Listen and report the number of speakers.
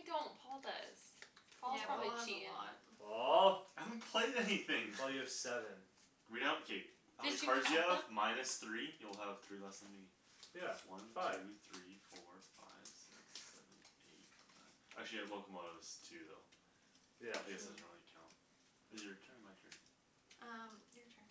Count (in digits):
4